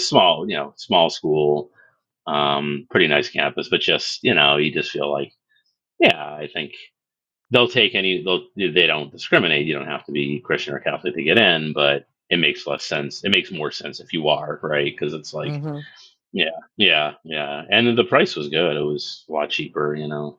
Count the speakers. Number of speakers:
one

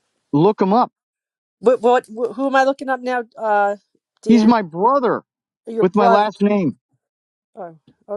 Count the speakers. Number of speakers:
two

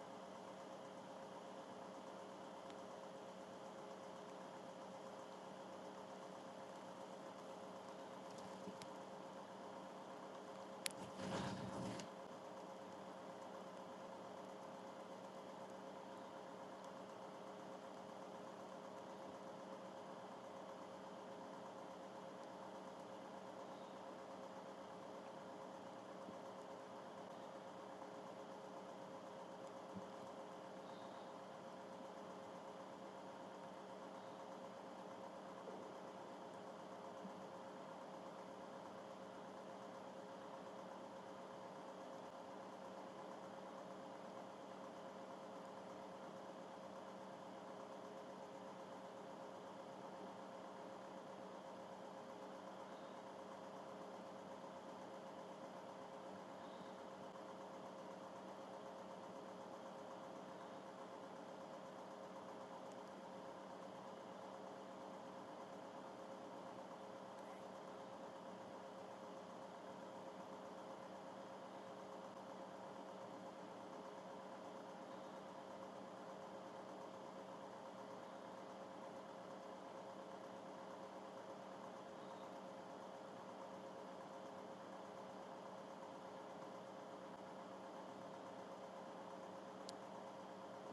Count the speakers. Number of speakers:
zero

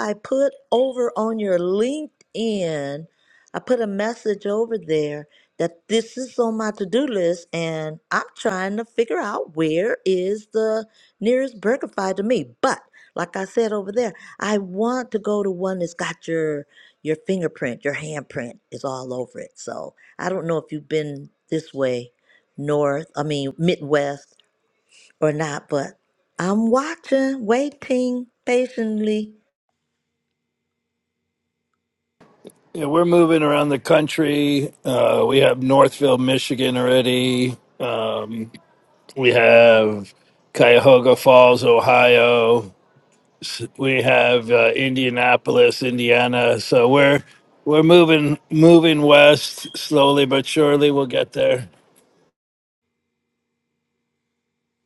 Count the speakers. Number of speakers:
two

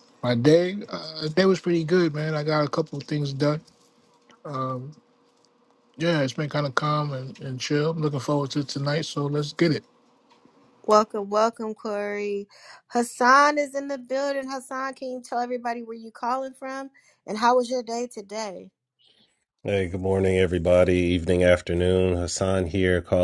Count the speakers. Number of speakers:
three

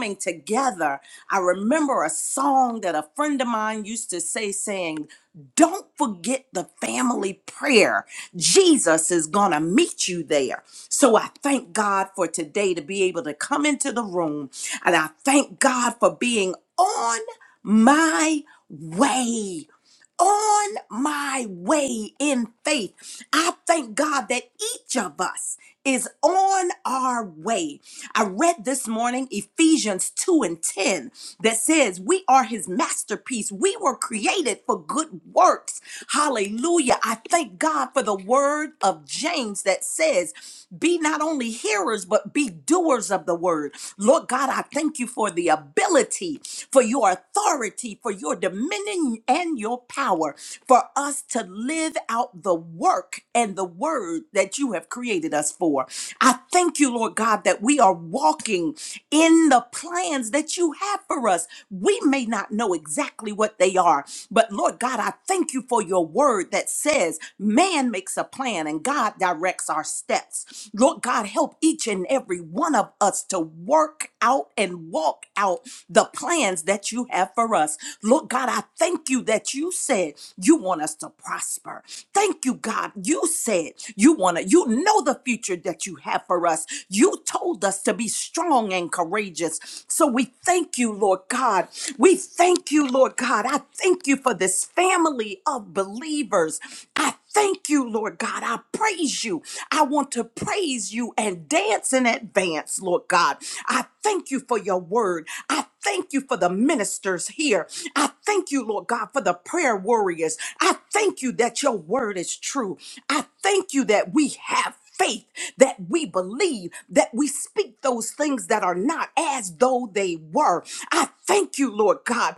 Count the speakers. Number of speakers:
one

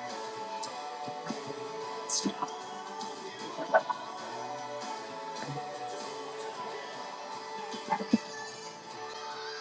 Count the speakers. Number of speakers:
zero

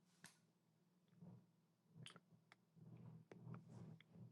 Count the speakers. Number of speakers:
zero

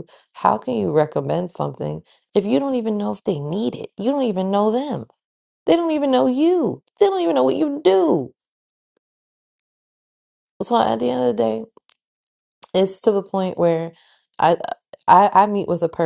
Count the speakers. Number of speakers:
one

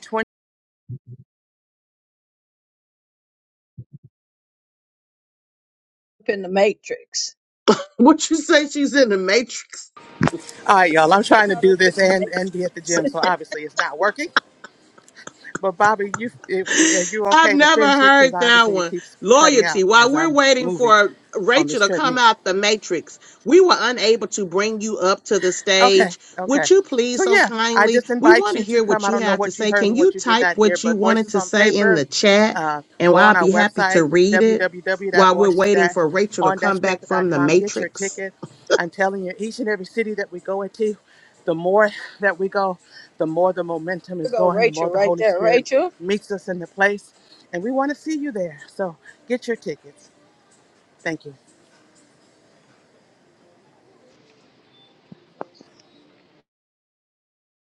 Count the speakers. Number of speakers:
three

